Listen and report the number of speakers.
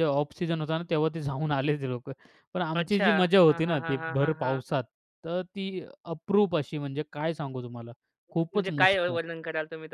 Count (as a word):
two